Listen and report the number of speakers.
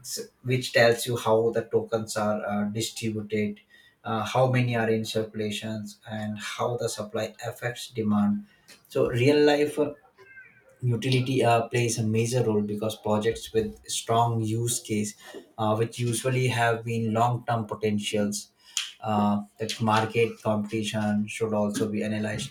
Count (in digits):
1